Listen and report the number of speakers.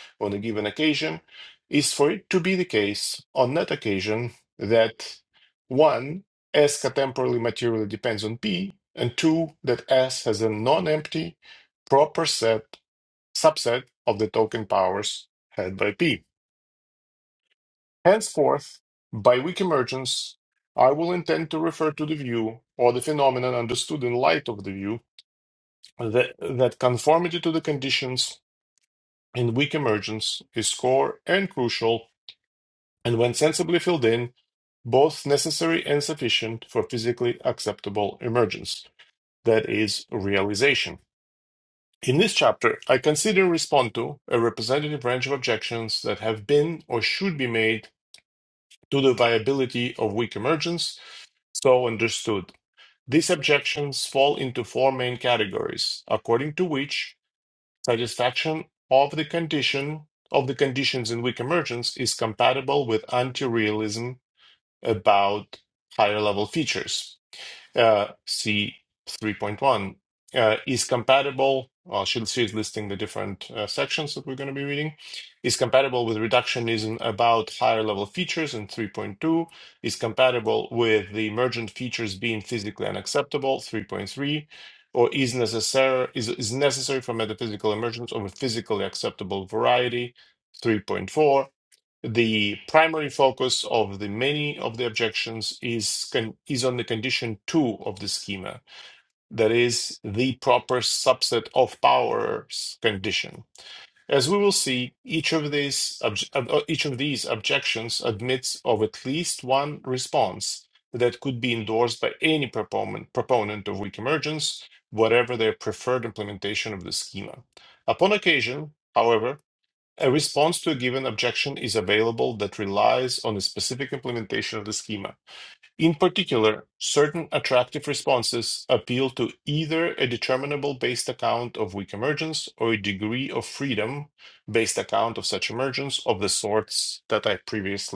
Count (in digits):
1